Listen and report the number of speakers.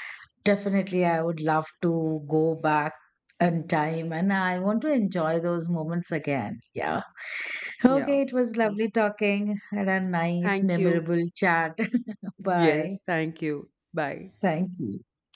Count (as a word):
two